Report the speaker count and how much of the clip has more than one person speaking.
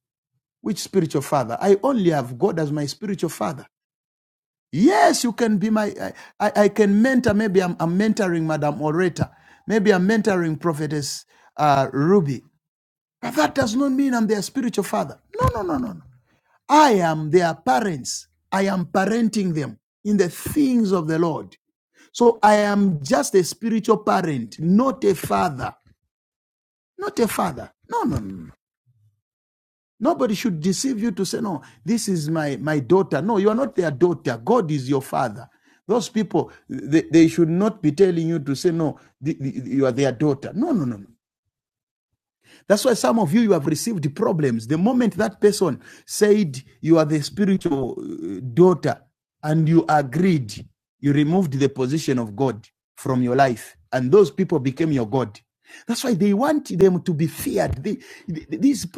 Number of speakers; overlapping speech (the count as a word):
one, no overlap